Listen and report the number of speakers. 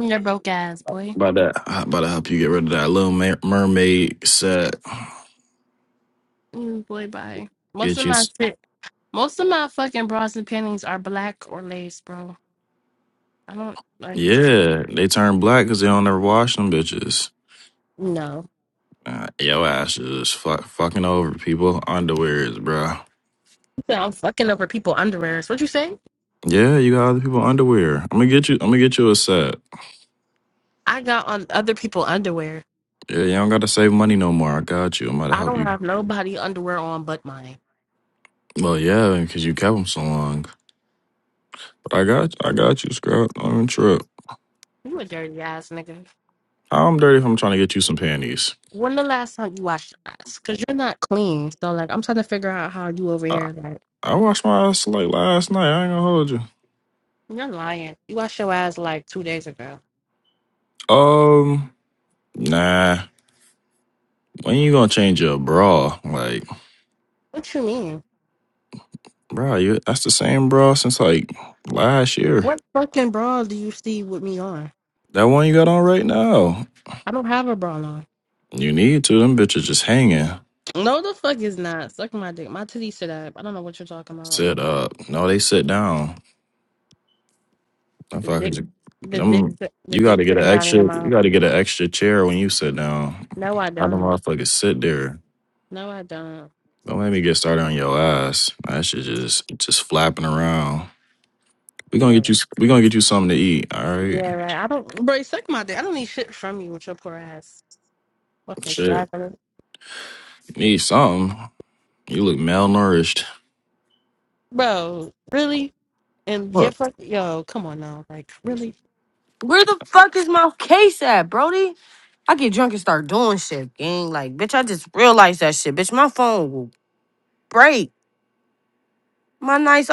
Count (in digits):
3